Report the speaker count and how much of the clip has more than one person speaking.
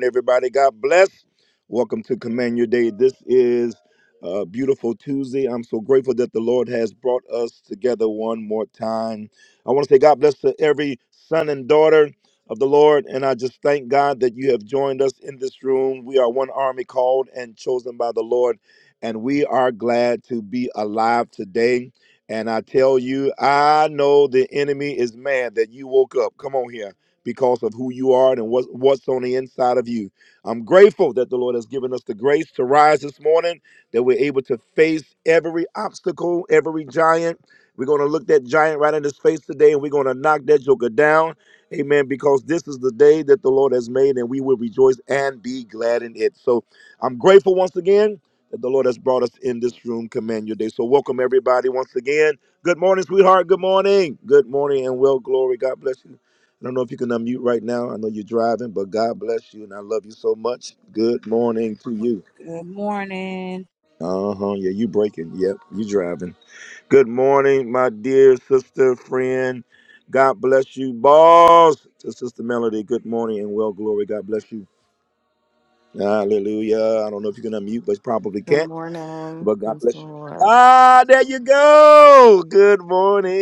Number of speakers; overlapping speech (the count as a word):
three, about 1%